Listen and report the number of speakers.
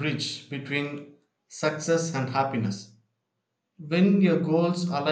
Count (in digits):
1